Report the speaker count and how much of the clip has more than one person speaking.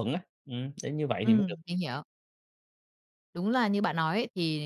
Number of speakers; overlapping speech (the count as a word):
two, about 6%